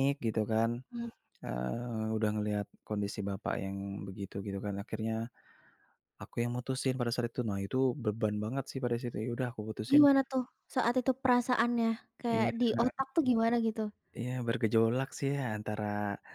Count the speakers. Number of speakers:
two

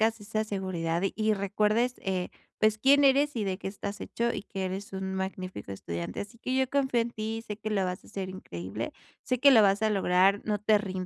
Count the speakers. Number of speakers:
one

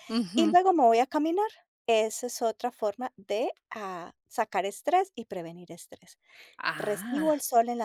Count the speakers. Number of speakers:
two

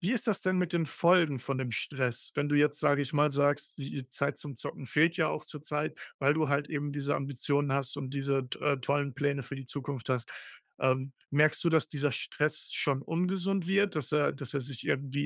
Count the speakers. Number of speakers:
one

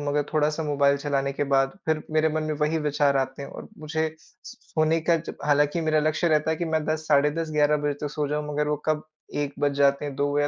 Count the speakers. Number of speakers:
one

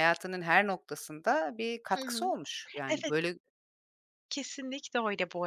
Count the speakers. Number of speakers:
two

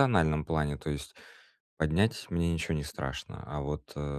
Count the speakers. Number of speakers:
one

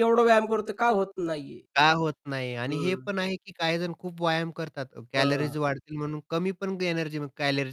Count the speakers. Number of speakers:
two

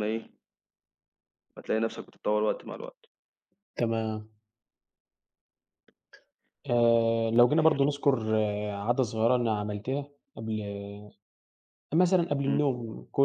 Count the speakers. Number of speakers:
two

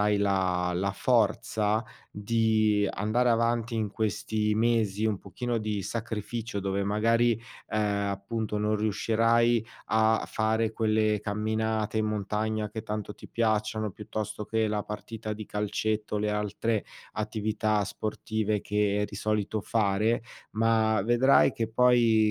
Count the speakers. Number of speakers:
one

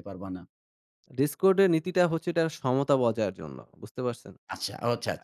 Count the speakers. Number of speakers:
two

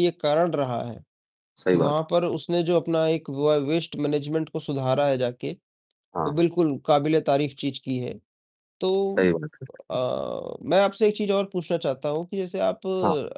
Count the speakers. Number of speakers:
two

